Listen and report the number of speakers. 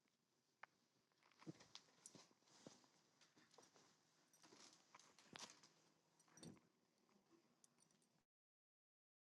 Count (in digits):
0